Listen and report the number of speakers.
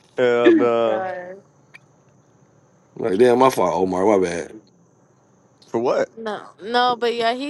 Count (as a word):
three